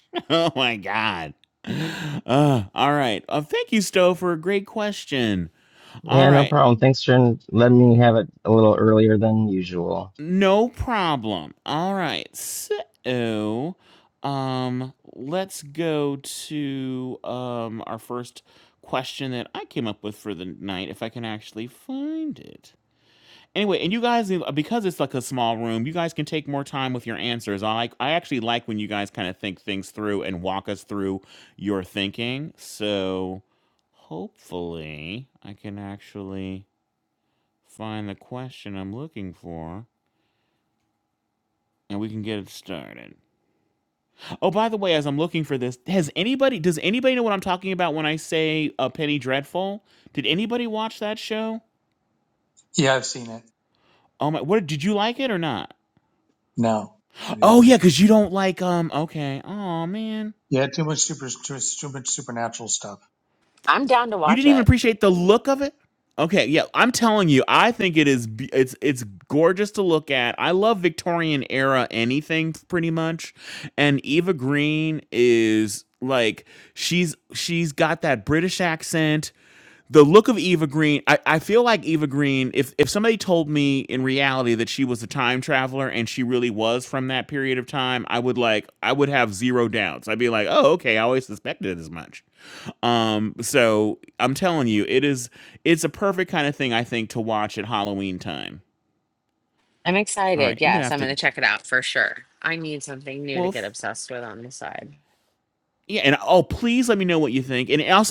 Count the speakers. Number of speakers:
4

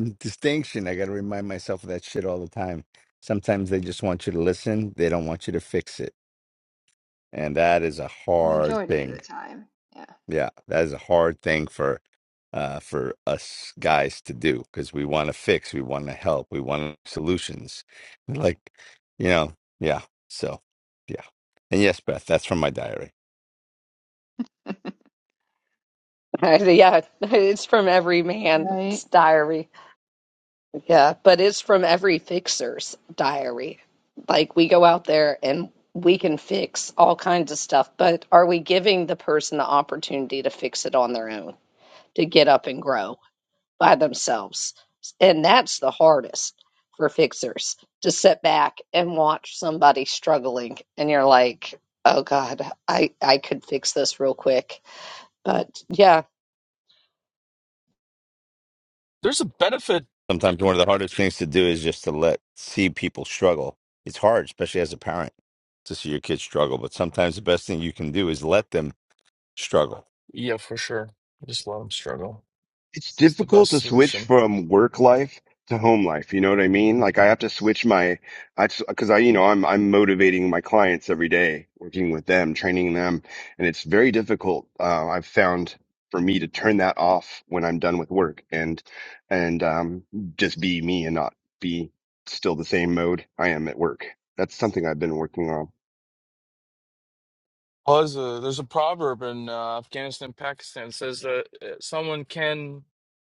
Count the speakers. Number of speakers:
5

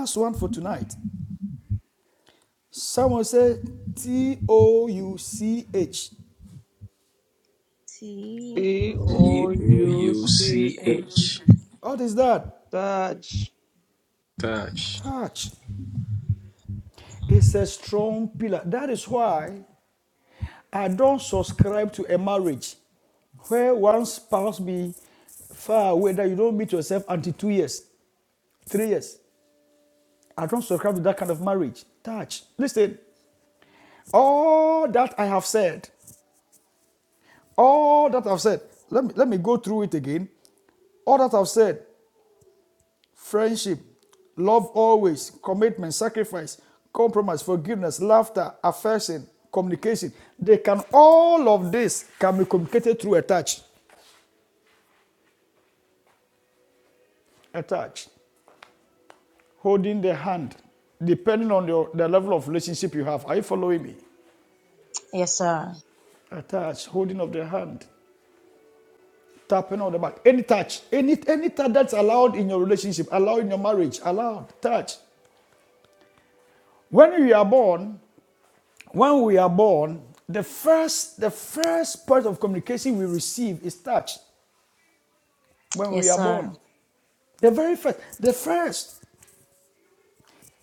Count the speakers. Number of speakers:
5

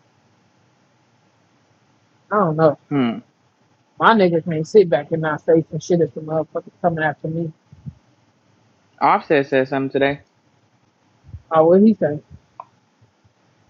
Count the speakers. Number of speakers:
2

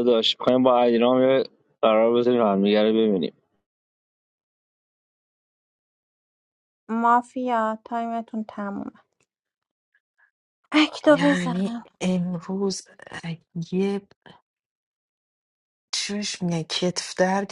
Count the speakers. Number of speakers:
3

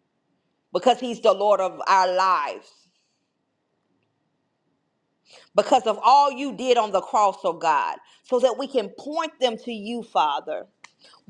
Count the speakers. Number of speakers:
1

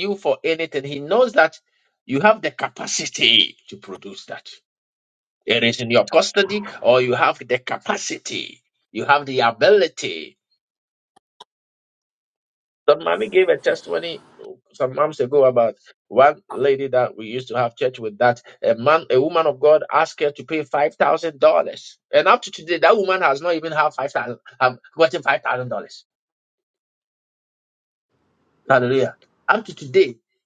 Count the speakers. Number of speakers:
1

